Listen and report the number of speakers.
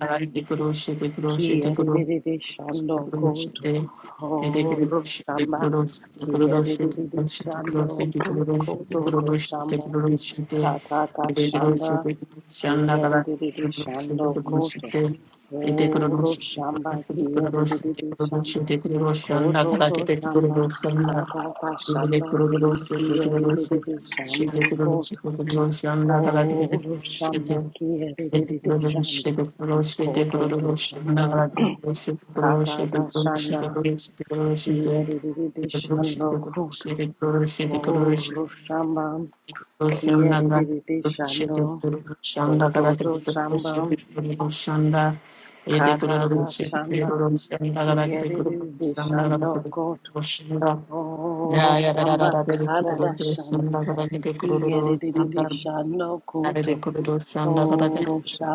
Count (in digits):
2